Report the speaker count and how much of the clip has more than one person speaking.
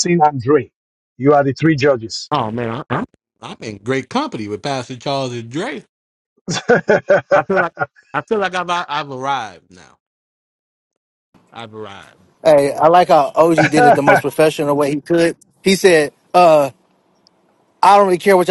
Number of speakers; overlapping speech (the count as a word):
three, no overlap